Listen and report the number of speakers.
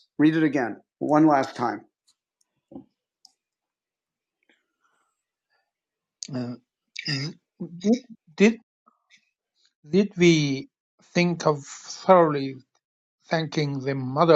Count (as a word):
two